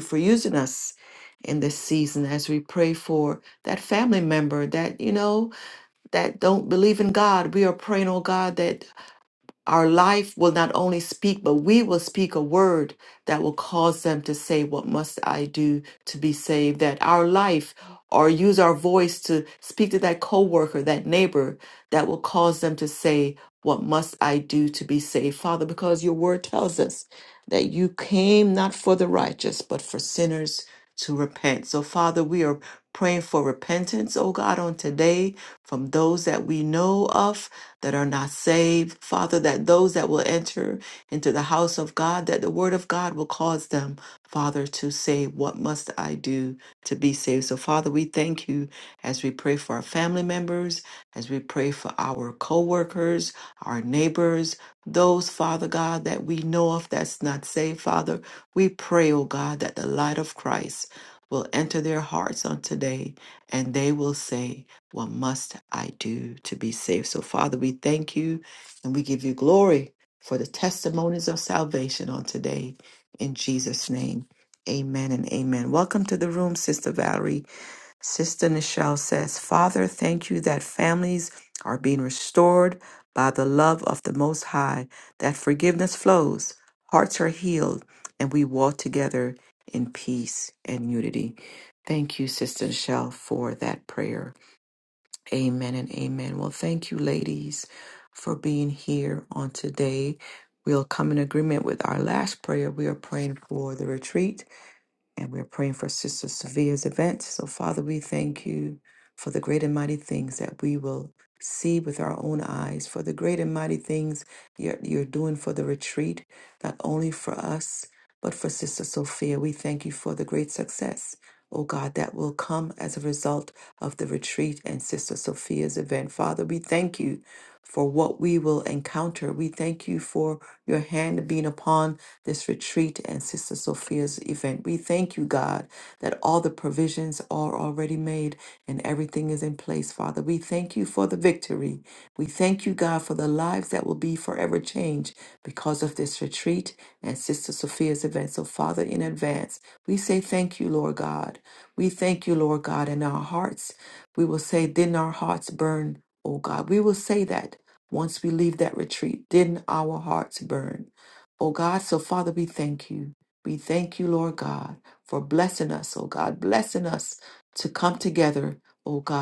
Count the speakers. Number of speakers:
one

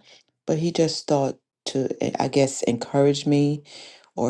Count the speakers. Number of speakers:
one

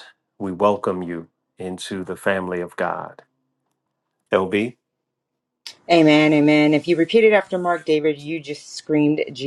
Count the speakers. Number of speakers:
two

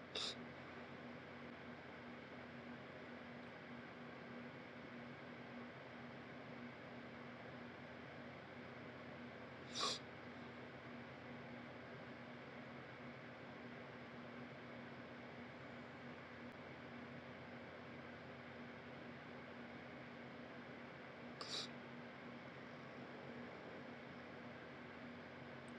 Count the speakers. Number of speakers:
zero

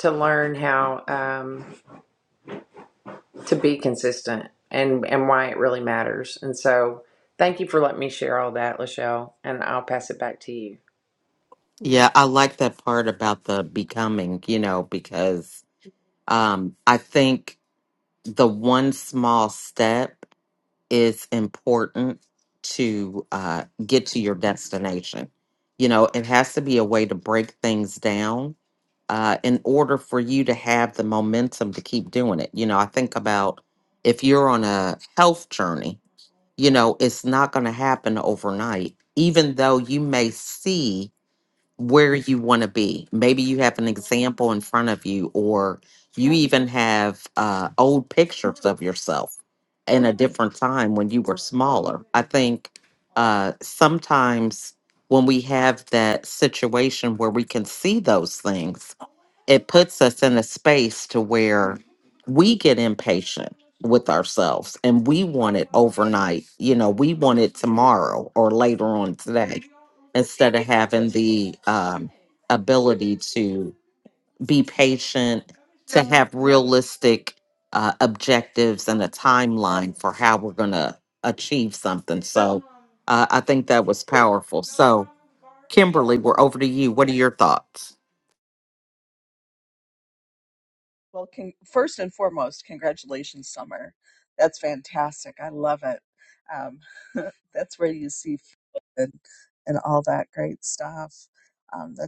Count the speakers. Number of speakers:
three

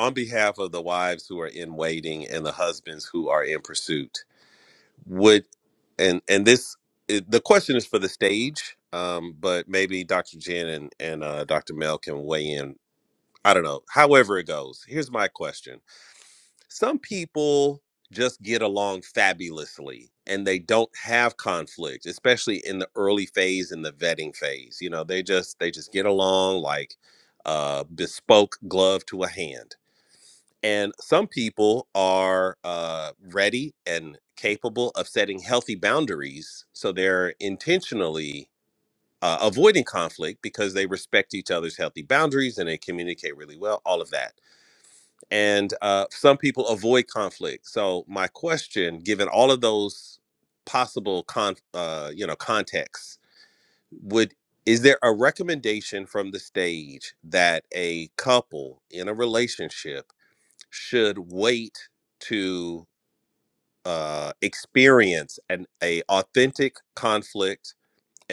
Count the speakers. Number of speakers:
one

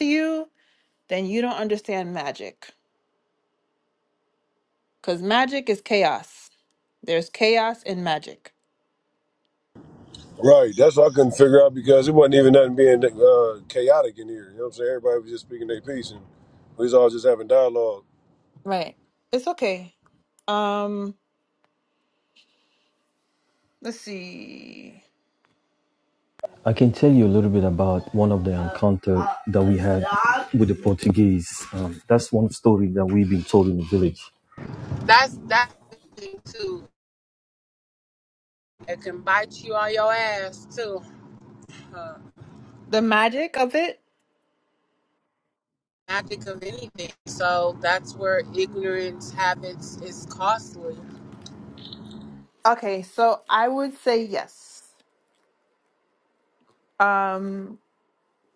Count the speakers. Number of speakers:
four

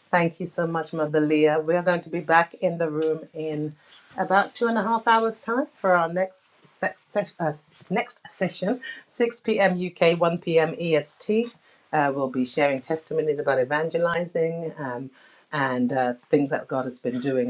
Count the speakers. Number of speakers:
one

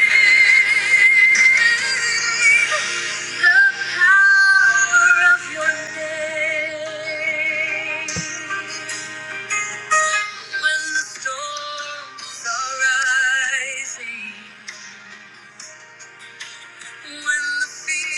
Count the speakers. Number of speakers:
one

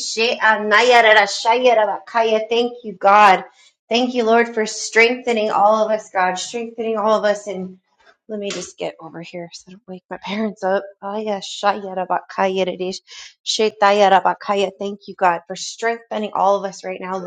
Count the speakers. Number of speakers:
one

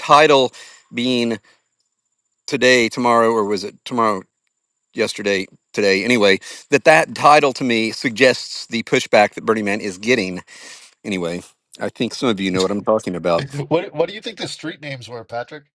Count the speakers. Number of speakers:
two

